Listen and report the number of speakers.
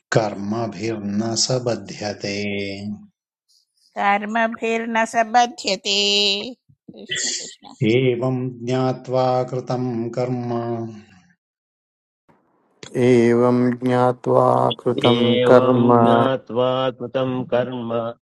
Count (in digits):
4